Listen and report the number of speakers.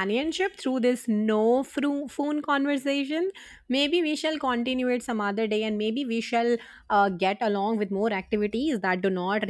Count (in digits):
1